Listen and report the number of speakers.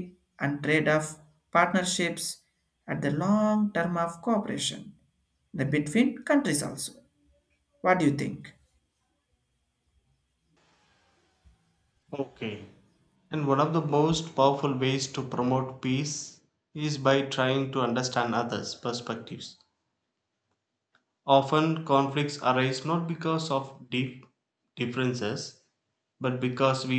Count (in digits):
2